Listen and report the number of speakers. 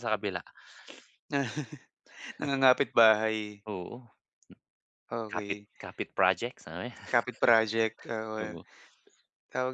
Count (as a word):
two